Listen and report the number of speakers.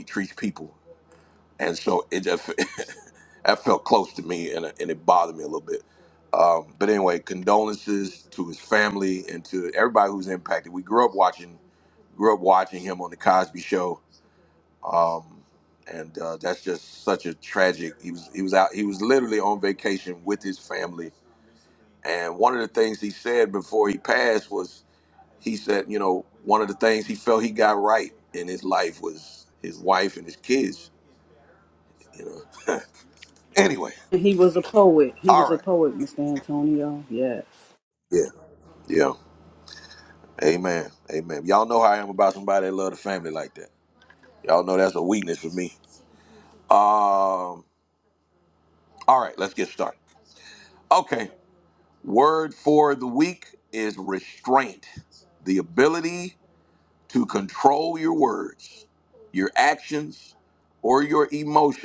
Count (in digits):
2